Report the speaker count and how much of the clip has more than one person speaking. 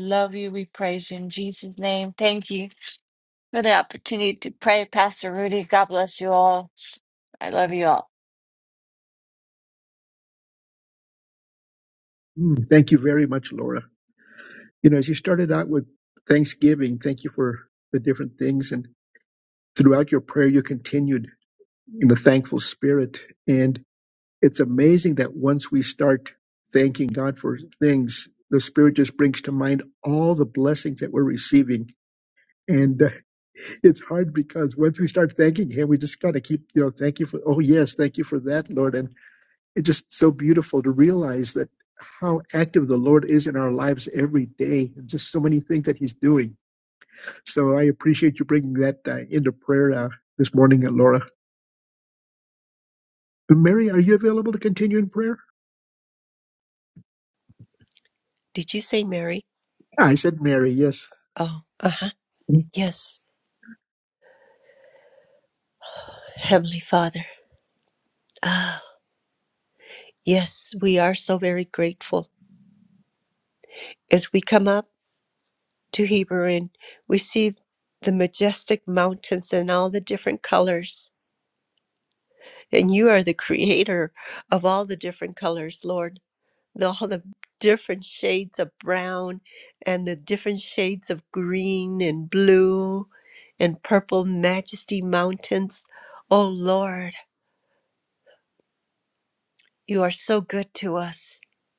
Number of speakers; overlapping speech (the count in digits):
3, no overlap